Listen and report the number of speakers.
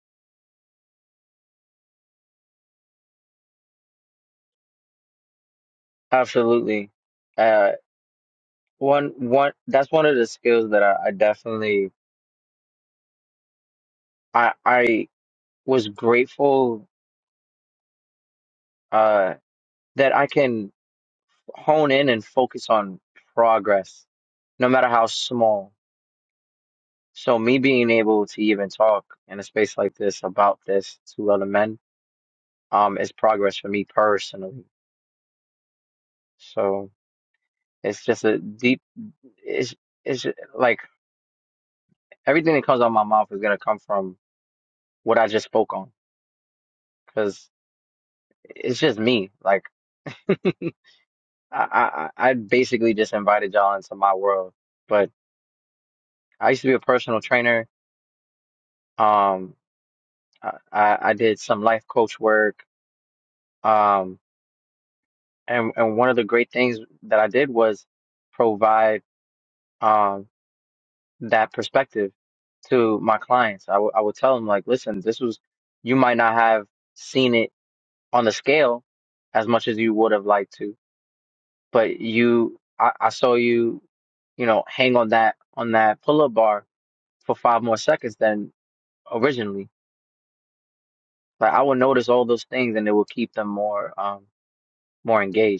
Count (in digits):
1